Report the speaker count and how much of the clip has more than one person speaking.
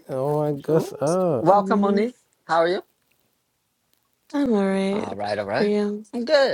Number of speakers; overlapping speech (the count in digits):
3, about 20%